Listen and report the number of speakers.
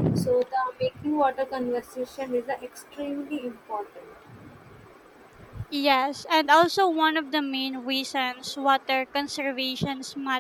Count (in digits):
2